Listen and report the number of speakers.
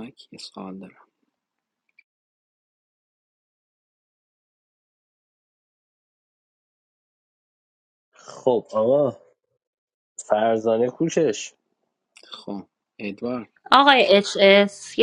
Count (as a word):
three